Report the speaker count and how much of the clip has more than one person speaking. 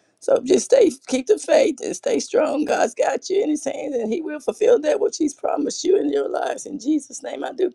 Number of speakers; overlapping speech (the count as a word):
one, no overlap